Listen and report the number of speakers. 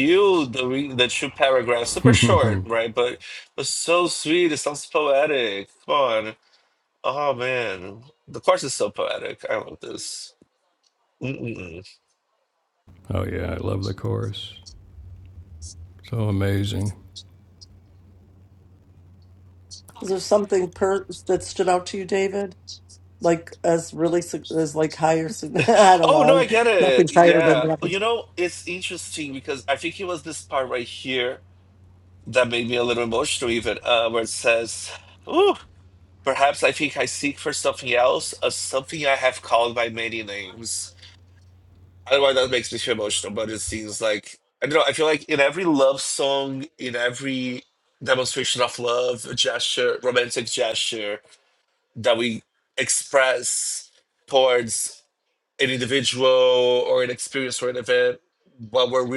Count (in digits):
3